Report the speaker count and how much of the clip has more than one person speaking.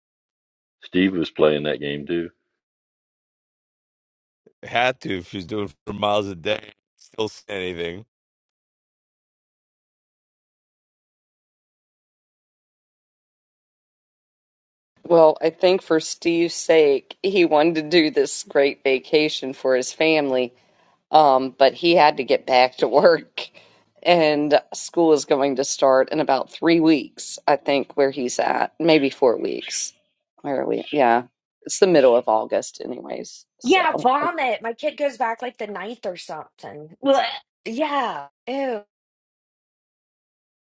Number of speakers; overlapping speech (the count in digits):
4, about 1%